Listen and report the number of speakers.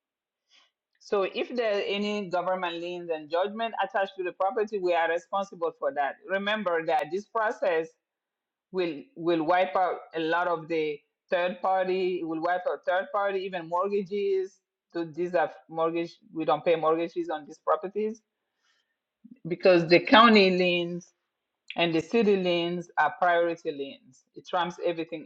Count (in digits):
1